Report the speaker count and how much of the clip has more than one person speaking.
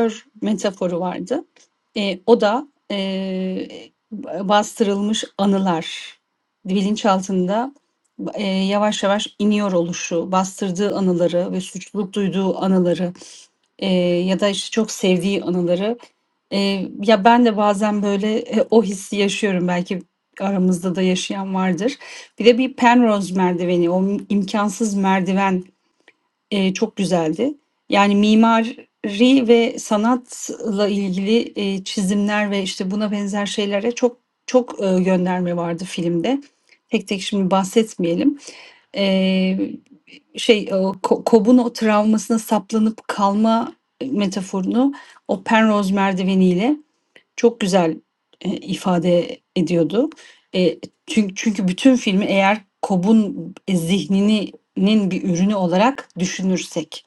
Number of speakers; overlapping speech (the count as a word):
one, no overlap